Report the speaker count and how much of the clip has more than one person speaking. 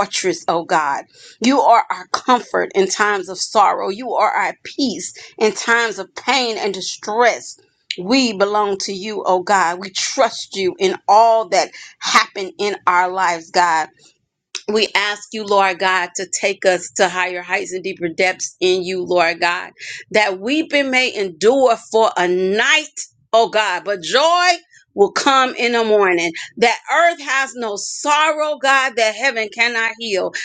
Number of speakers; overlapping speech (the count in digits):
1, no overlap